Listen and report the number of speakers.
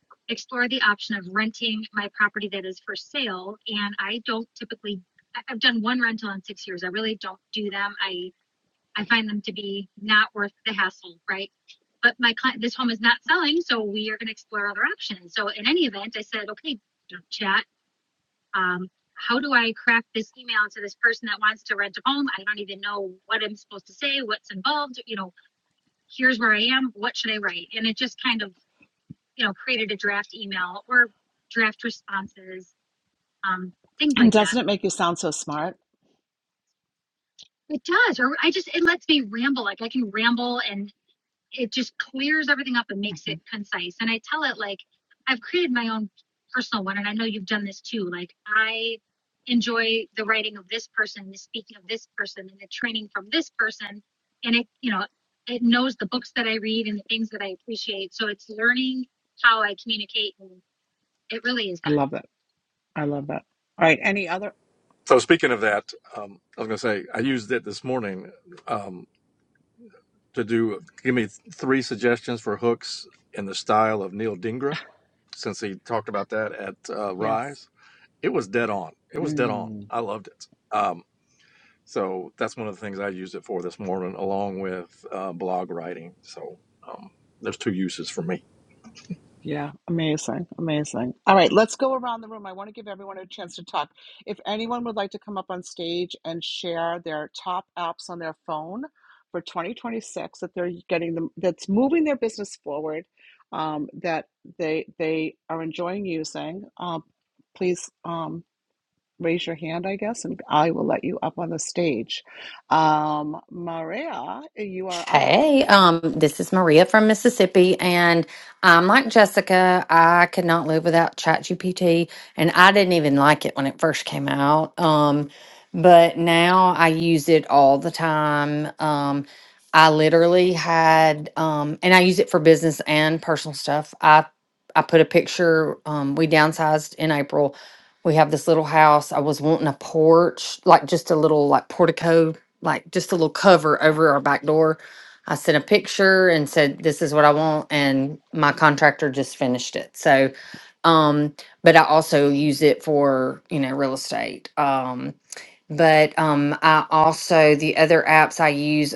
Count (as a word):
four